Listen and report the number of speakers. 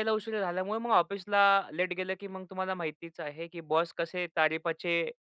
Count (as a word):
one